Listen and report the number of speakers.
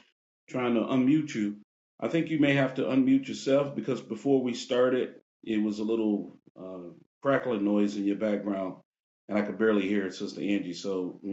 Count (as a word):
one